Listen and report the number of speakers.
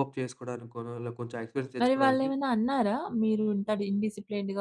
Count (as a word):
two